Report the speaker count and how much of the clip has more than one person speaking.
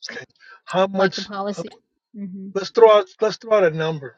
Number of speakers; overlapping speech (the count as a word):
two, about 16%